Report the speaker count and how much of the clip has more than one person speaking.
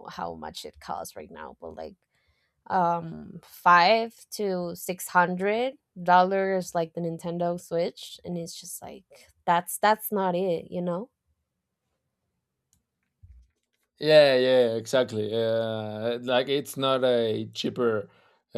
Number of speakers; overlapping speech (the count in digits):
2, no overlap